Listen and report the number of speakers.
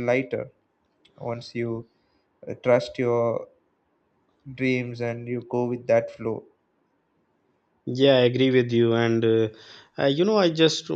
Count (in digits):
2